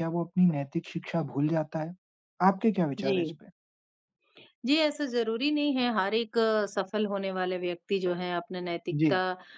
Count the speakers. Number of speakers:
two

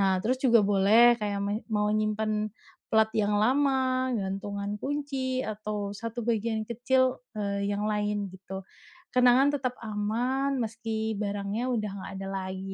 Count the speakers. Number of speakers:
one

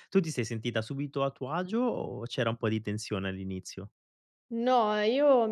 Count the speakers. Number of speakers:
two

